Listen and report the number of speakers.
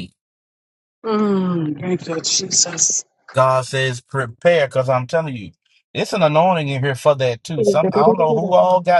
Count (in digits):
2